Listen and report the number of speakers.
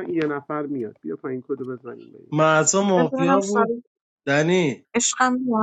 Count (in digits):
3